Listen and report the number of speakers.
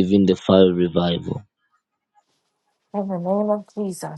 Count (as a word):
two